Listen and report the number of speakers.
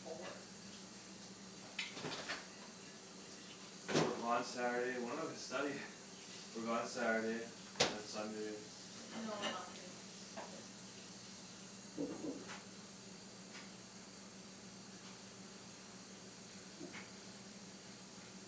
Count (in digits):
2